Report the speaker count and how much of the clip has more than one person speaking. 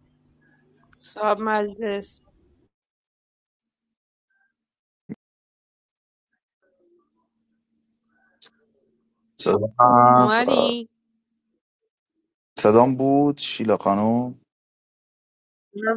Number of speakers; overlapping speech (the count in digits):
2, about 4%